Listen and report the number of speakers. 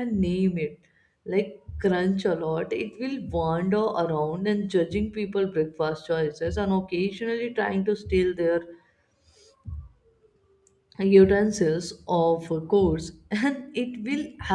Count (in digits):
1